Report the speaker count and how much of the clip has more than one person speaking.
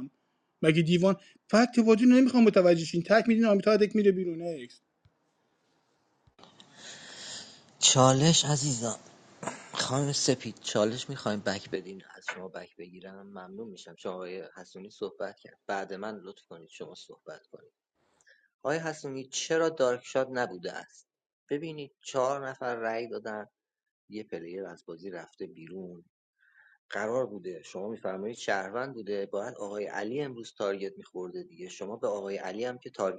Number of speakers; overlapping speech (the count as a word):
two, no overlap